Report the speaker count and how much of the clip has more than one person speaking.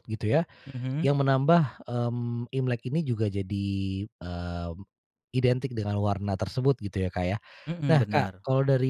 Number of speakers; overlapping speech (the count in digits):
2, about 6%